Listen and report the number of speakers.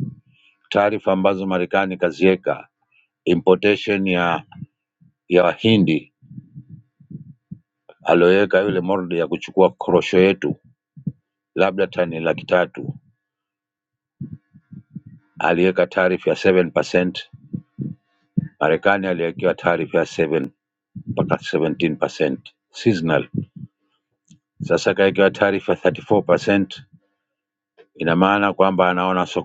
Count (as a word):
one